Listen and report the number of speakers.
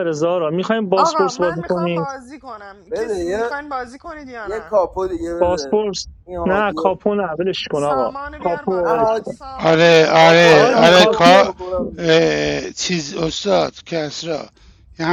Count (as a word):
four